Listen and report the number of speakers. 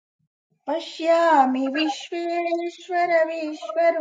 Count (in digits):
1